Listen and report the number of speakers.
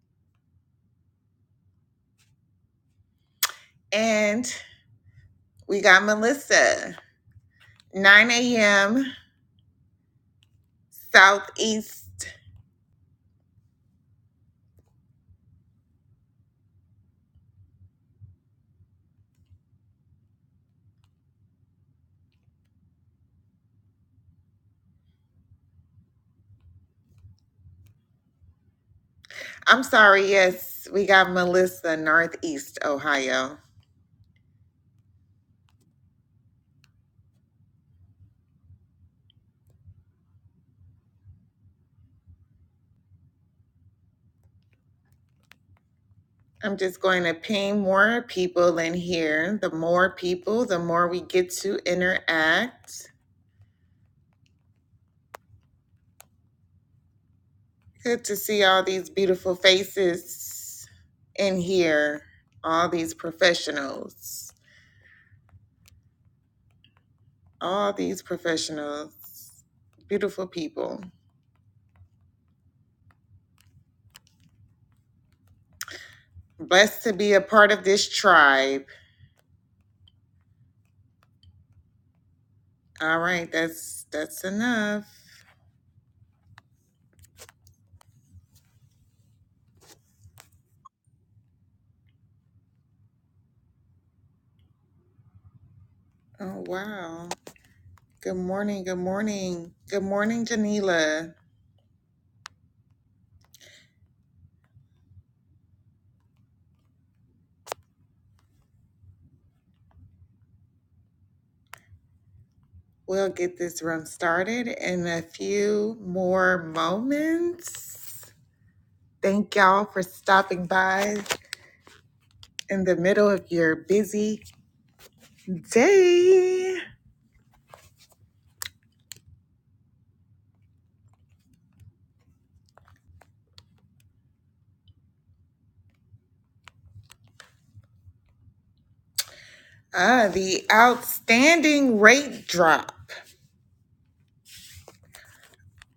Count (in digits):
1